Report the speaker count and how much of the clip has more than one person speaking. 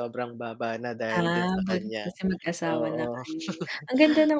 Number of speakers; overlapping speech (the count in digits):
2, about 38%